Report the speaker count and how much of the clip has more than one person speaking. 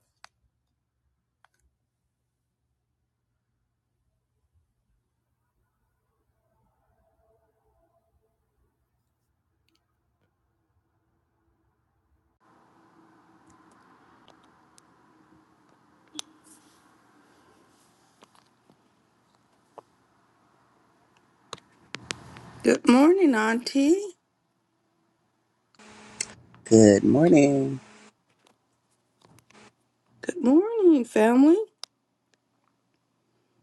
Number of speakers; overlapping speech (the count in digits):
2, no overlap